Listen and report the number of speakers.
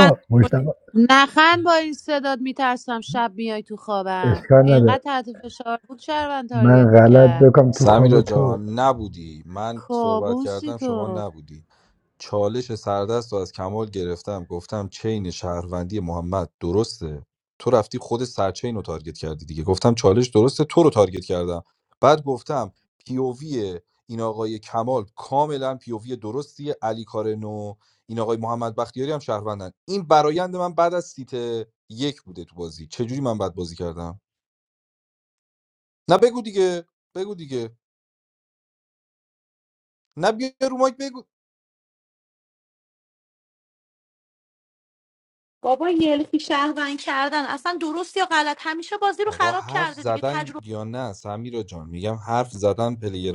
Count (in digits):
4